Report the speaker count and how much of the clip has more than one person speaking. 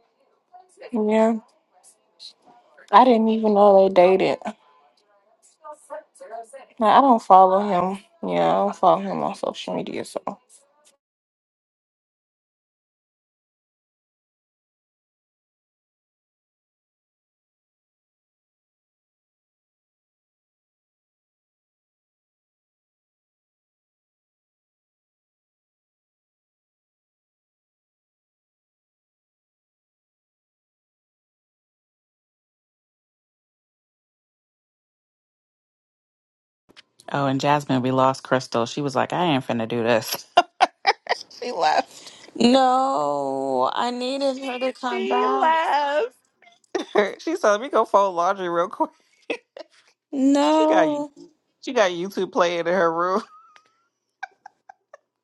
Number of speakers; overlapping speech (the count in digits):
3, about 2%